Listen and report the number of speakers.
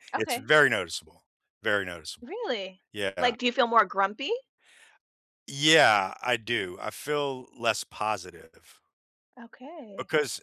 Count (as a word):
two